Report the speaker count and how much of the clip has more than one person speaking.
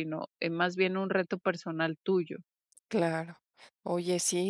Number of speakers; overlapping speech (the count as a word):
two, no overlap